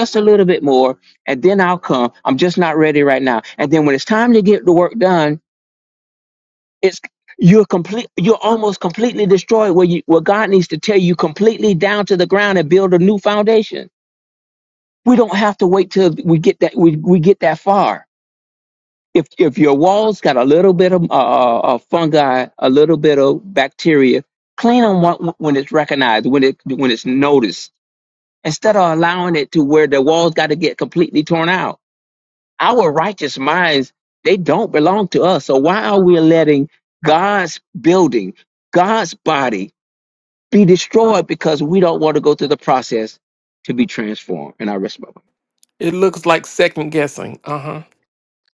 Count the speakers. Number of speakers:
2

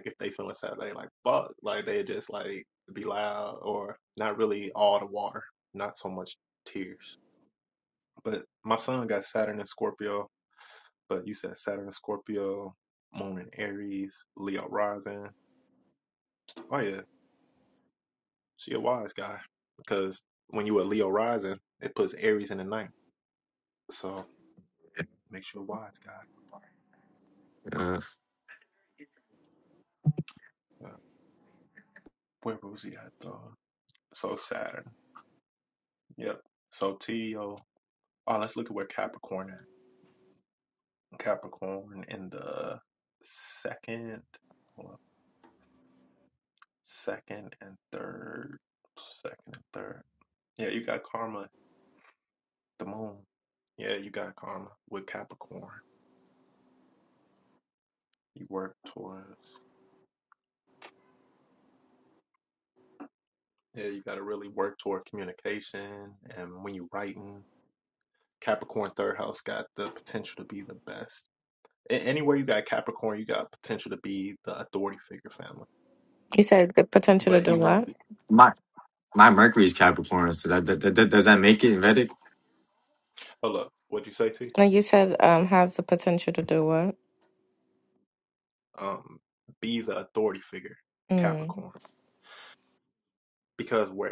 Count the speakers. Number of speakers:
3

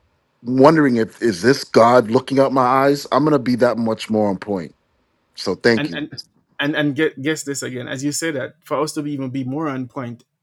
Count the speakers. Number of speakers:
2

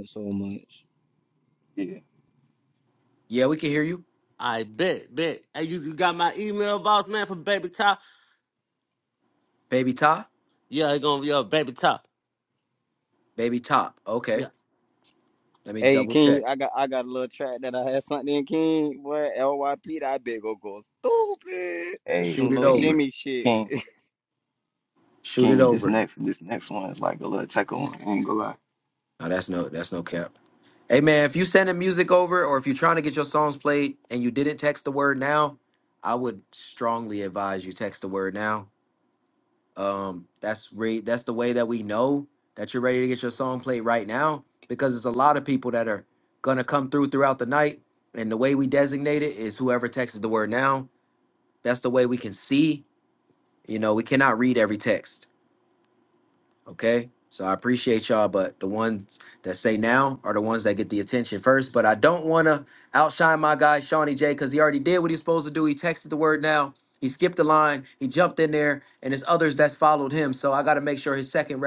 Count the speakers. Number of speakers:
4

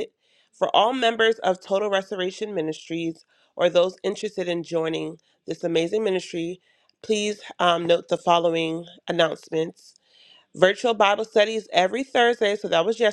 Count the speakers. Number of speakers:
1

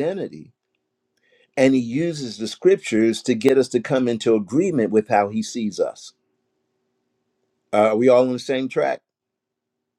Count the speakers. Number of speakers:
1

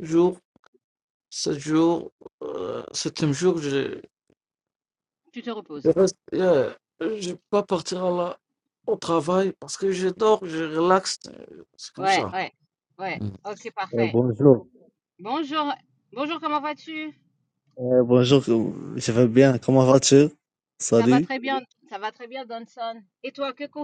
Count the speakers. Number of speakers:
3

